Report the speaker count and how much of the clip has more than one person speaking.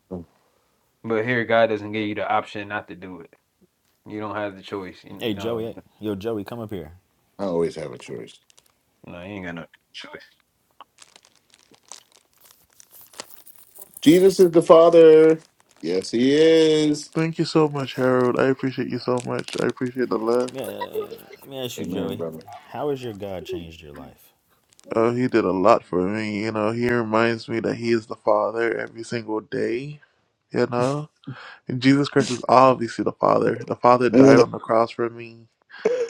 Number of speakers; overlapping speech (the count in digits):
4, about 3%